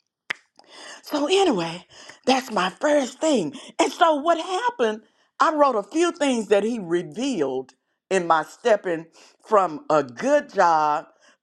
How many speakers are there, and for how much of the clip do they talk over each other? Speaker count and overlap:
one, no overlap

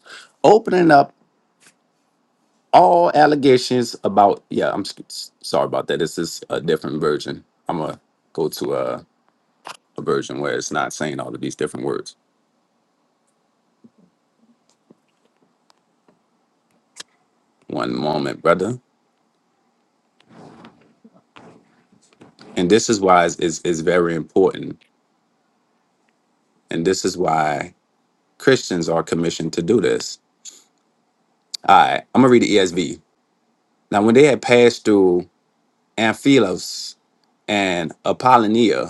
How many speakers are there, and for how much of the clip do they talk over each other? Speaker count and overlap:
one, no overlap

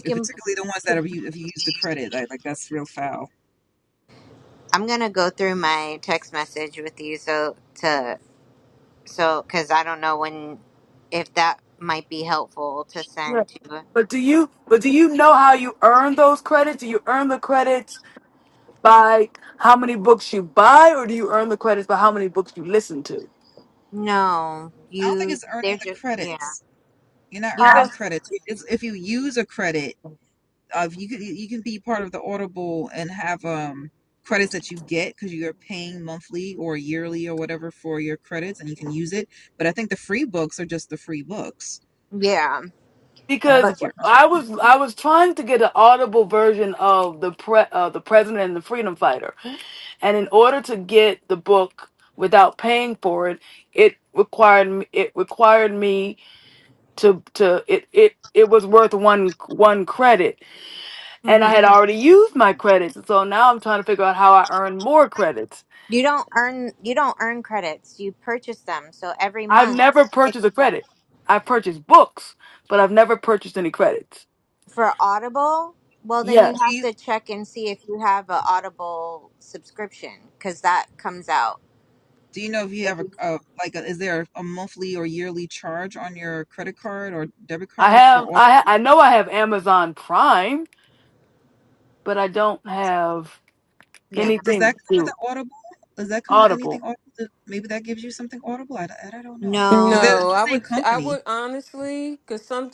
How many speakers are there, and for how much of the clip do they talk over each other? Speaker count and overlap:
four, about 9%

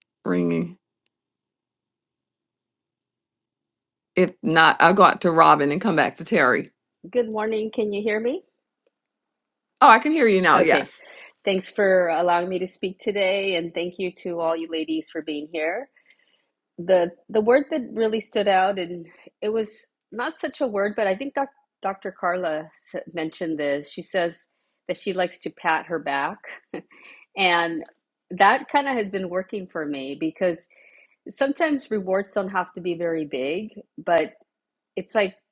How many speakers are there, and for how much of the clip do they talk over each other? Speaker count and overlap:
two, about 1%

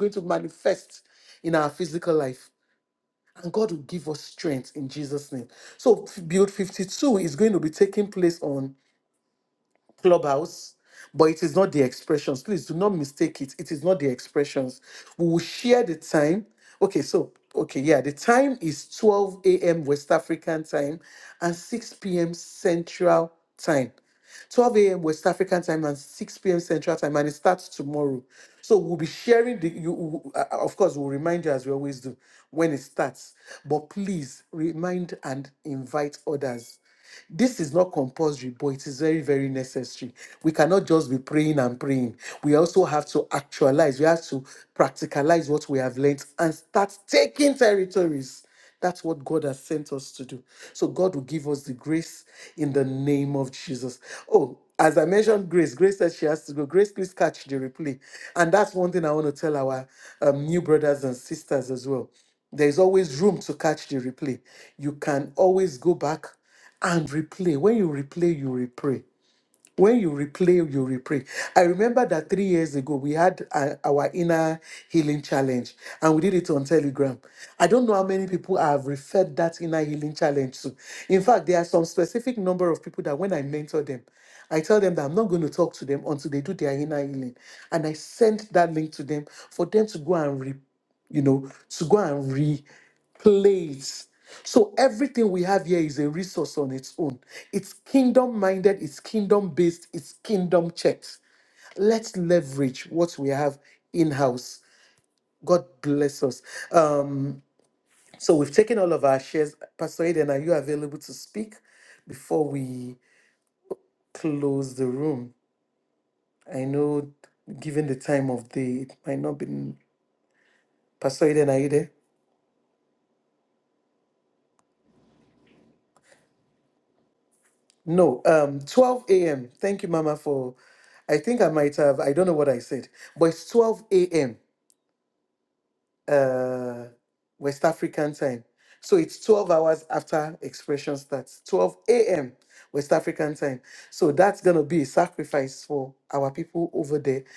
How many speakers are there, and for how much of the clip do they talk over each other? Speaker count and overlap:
one, no overlap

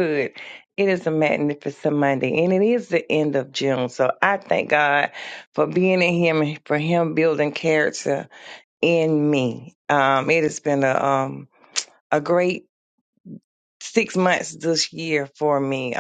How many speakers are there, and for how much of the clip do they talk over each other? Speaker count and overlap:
one, no overlap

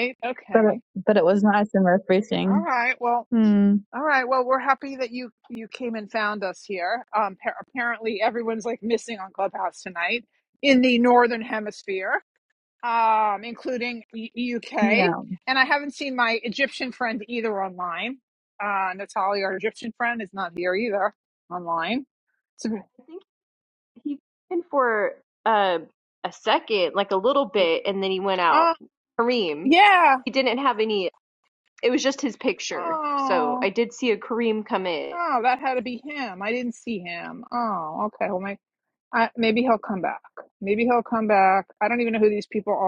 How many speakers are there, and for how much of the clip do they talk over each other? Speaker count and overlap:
three, about 3%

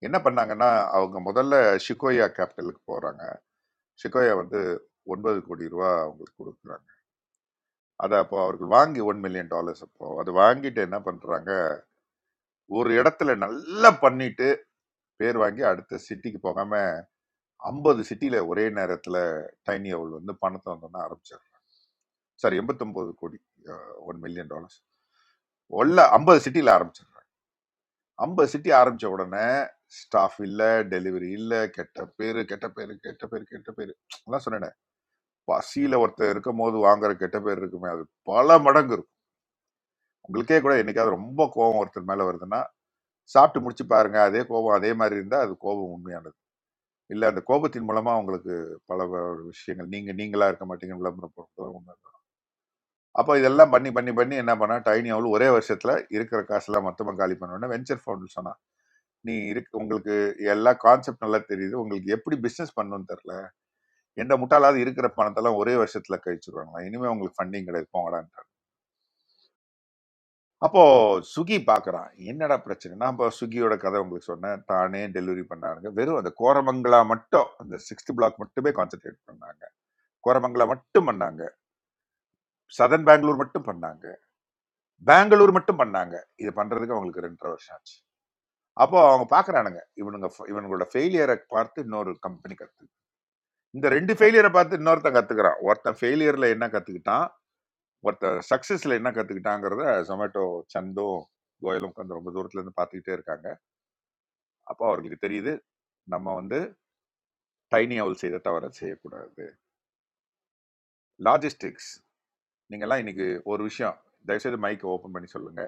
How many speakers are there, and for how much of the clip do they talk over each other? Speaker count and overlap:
one, no overlap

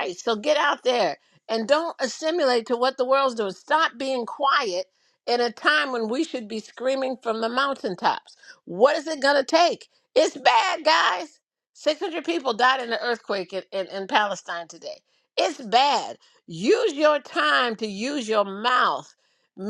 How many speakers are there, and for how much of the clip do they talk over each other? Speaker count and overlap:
one, no overlap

